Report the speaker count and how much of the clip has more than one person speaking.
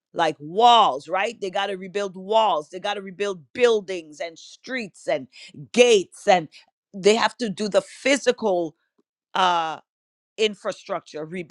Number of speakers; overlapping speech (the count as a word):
one, no overlap